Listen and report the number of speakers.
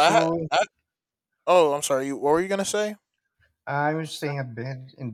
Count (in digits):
2